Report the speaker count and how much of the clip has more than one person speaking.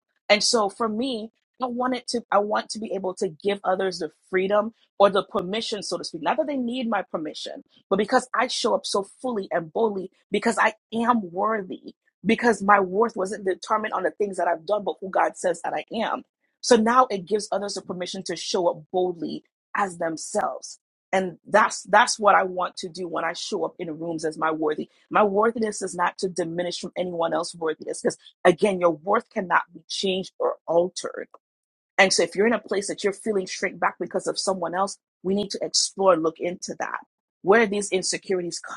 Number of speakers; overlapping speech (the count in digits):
1, no overlap